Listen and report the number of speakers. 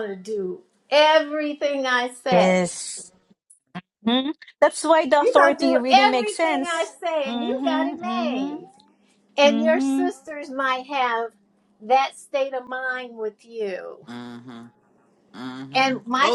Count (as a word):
three